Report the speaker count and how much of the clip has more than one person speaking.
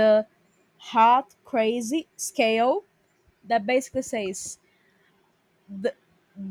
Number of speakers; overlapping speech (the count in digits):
1, no overlap